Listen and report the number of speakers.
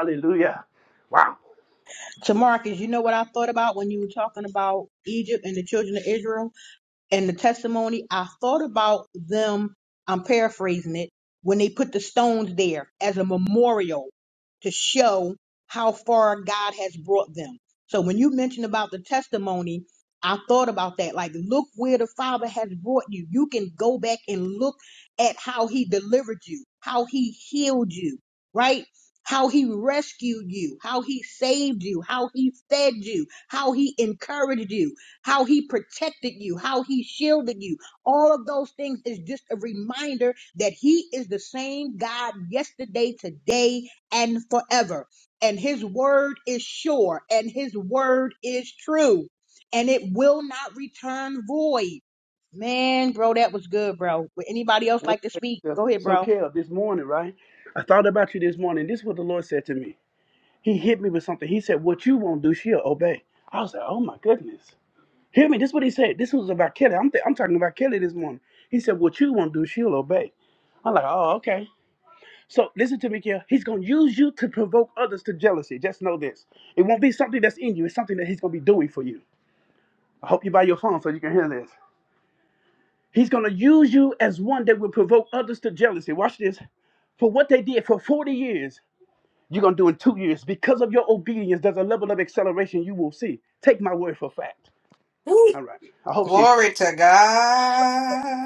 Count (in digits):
3